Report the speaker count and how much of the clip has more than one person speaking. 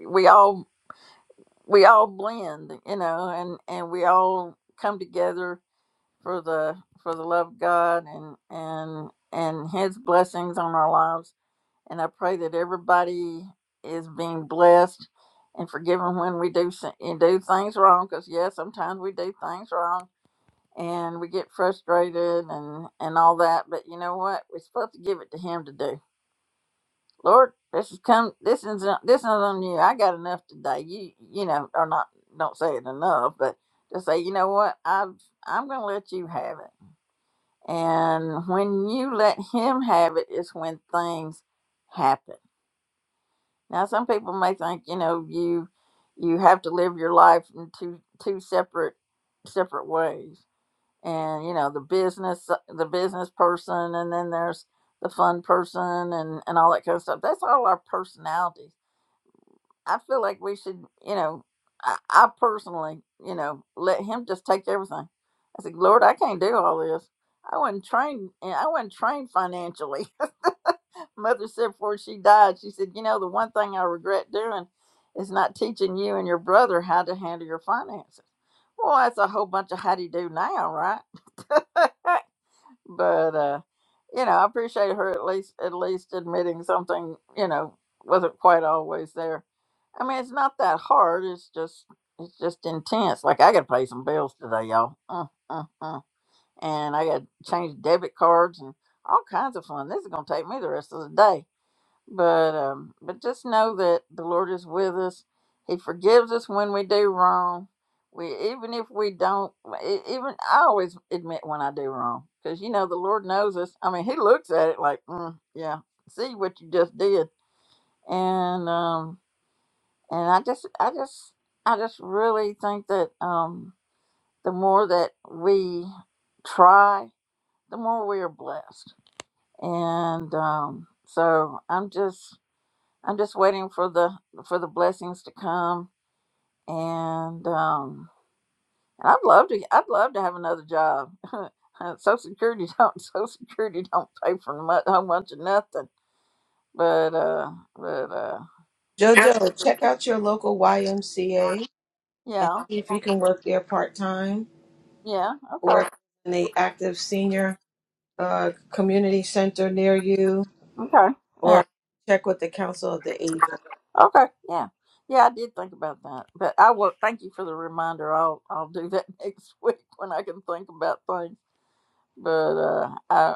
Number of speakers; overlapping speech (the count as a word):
two, under 1%